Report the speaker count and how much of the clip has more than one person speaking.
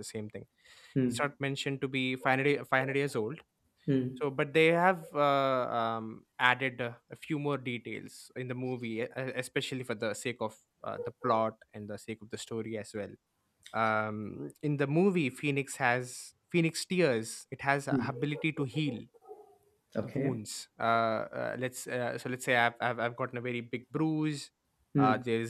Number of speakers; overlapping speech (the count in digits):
2, about 5%